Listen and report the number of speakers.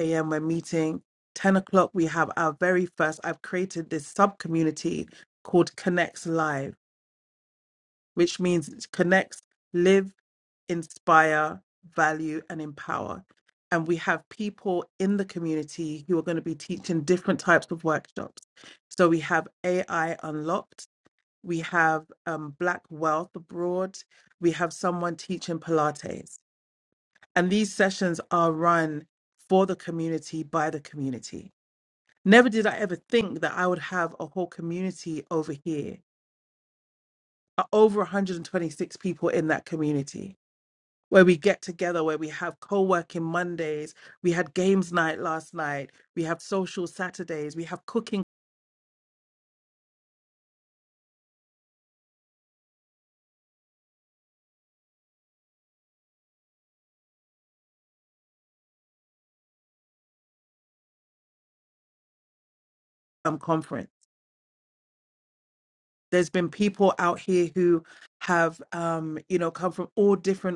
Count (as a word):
one